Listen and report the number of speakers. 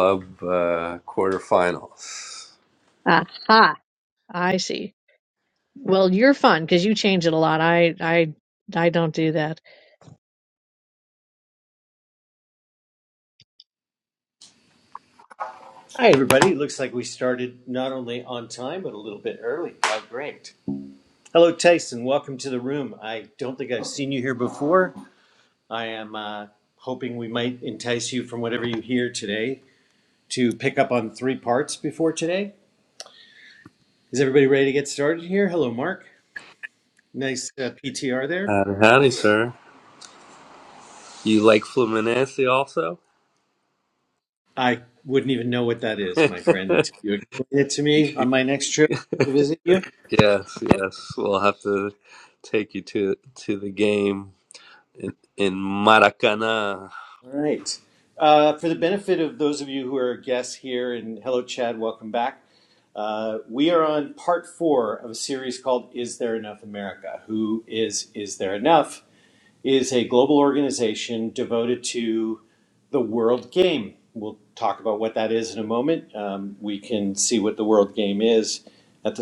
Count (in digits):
3